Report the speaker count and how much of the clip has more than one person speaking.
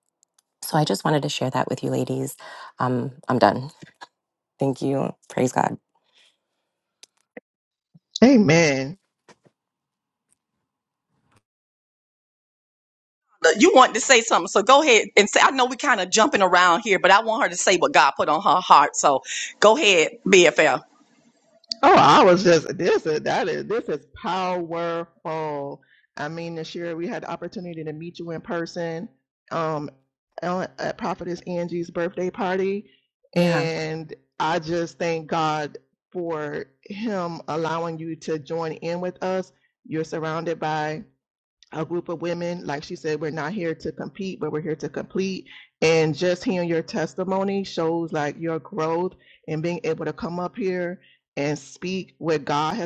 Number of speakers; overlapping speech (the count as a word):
three, about 1%